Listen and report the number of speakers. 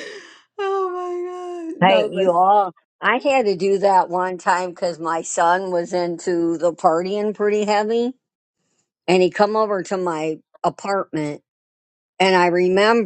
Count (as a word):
two